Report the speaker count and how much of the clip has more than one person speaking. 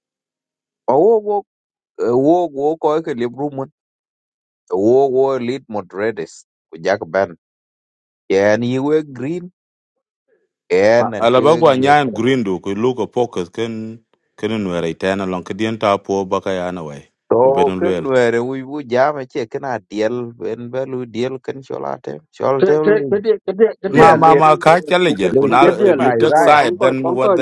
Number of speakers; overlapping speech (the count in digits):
3, about 19%